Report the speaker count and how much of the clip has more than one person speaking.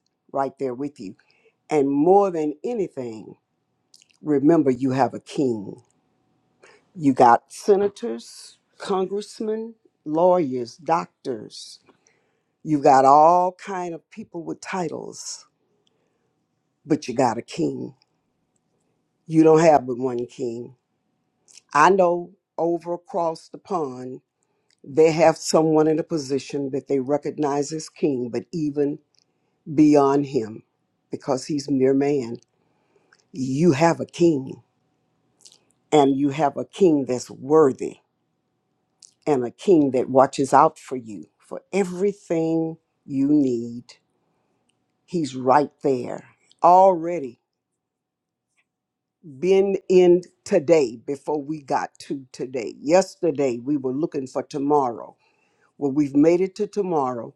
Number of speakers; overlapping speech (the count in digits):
1, no overlap